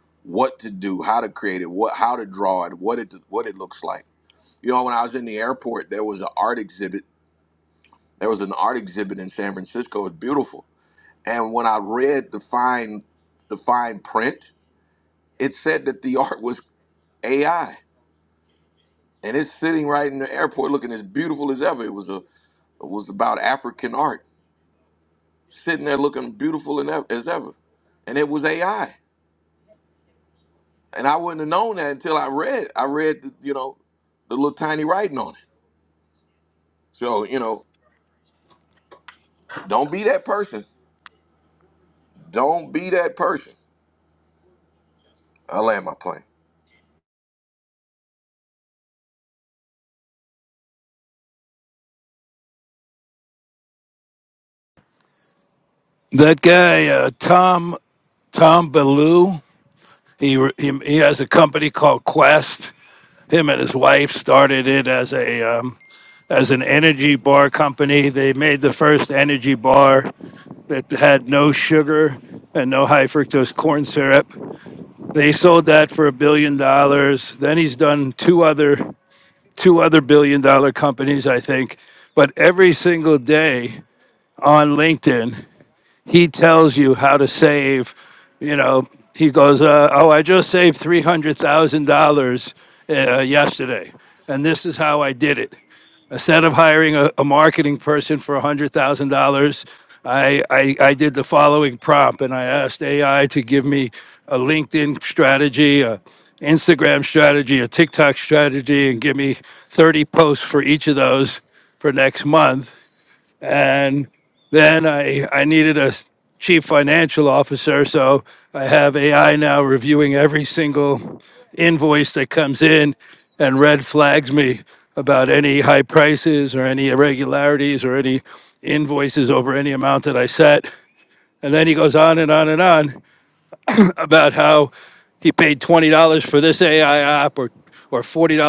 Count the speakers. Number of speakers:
2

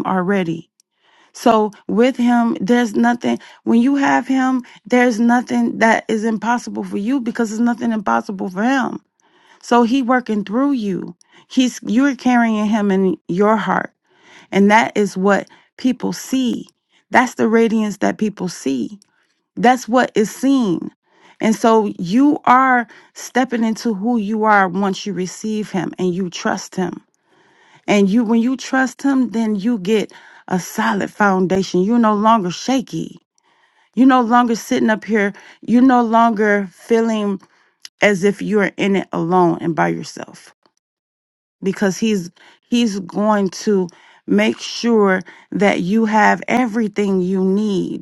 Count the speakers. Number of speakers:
1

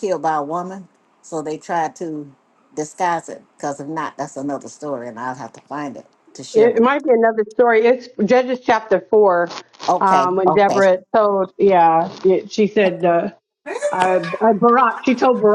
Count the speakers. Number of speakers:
2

